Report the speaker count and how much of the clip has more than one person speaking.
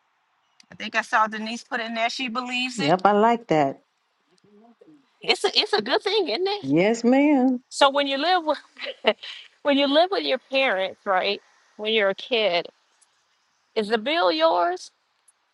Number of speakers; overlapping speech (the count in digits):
2, about 1%